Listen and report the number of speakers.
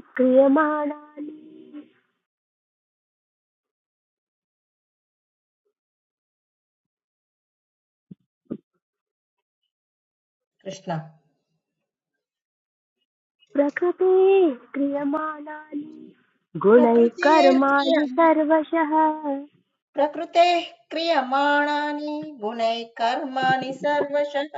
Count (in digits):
2